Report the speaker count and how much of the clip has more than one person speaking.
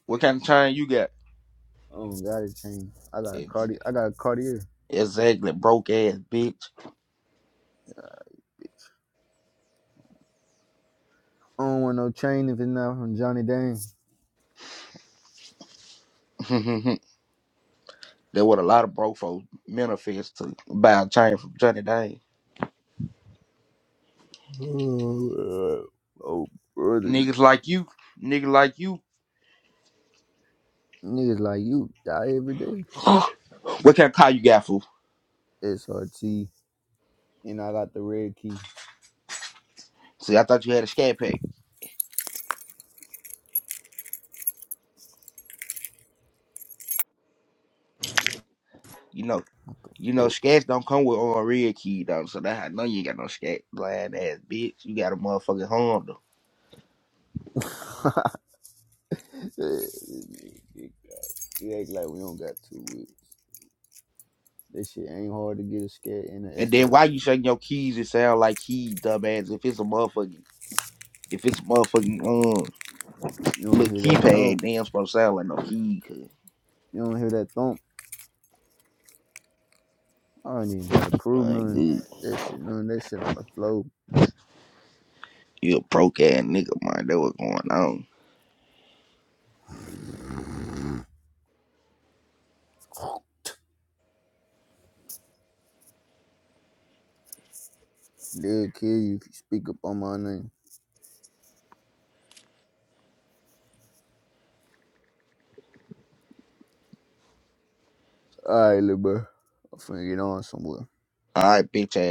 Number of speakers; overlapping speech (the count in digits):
2, about 2%